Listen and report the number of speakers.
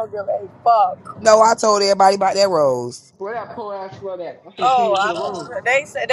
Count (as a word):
three